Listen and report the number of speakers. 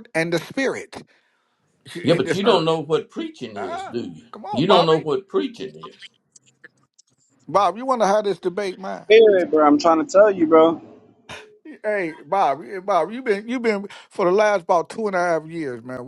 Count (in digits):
3